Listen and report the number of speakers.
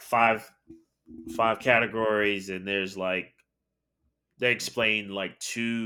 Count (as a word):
one